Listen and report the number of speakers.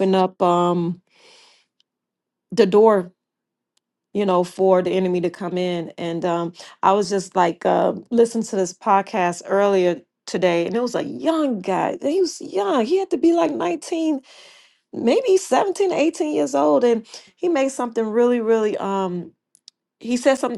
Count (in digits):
1